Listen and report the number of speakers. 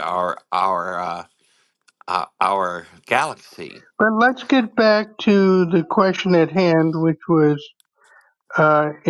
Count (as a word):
two